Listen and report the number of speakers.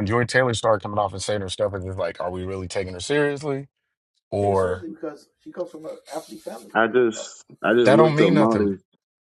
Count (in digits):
3